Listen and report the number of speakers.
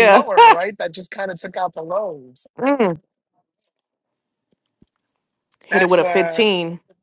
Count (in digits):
2